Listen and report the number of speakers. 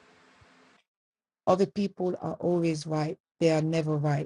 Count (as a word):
one